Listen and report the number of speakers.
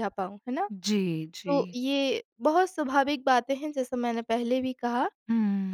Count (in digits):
2